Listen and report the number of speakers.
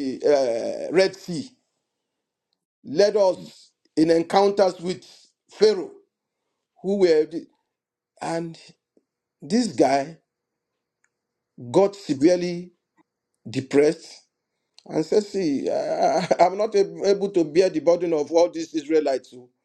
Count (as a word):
one